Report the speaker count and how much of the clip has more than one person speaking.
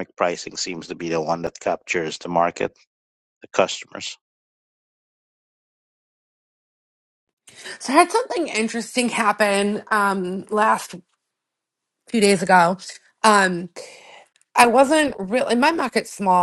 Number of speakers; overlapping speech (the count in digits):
2, no overlap